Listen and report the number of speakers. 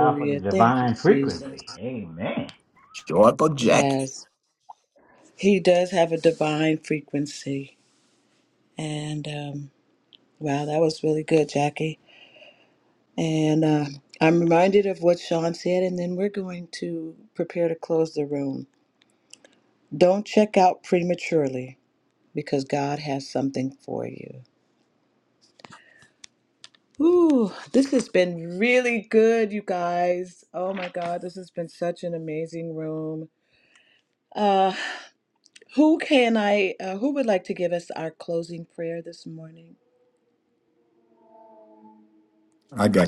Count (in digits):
3